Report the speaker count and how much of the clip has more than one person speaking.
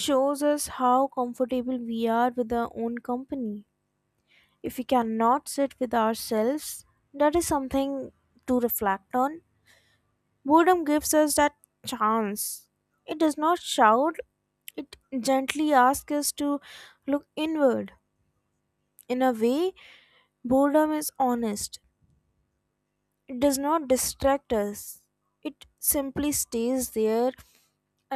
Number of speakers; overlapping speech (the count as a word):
one, no overlap